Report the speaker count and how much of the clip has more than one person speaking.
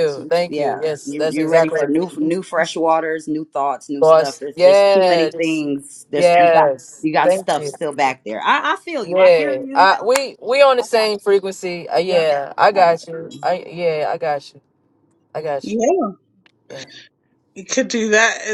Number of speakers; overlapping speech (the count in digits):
3, about 35%